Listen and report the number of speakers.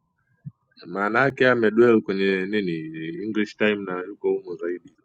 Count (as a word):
one